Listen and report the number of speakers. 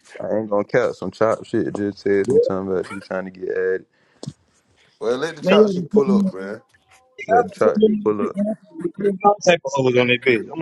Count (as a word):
three